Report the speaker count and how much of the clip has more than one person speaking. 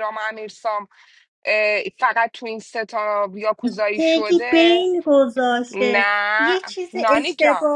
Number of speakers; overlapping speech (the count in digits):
2, about 28%